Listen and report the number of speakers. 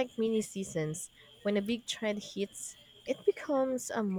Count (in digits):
1